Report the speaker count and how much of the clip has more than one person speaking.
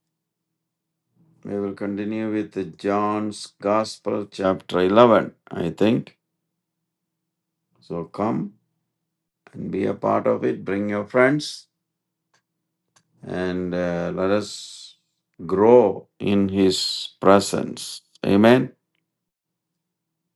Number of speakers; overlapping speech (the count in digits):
1, no overlap